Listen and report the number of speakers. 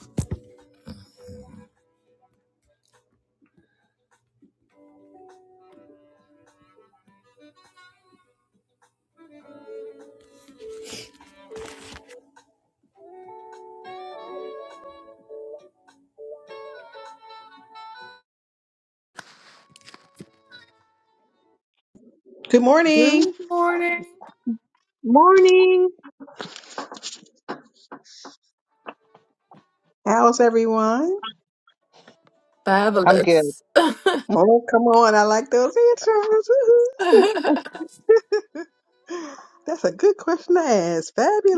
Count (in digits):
3